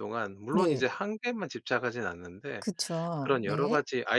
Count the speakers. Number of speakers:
two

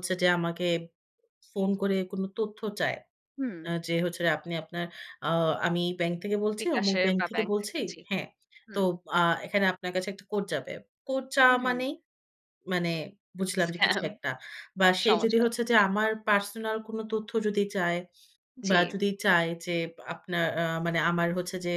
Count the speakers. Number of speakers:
two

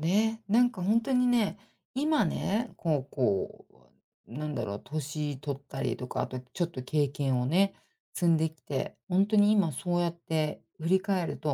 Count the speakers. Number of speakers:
one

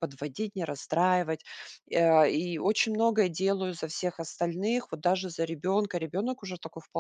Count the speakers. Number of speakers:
one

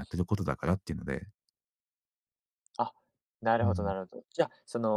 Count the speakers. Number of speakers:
two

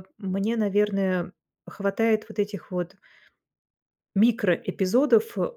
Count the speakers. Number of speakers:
one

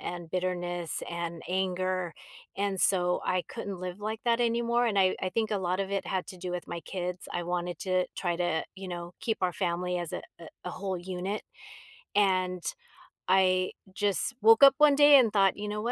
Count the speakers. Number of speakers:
one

